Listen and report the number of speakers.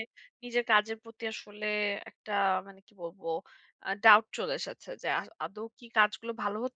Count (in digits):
1